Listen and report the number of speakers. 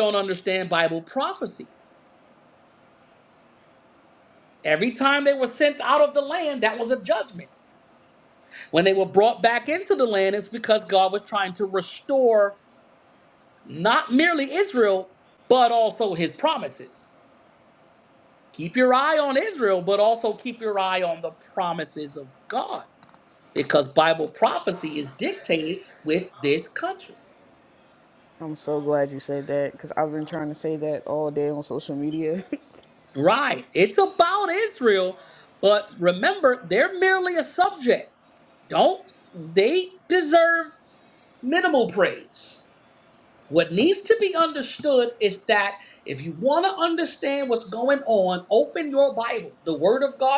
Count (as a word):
two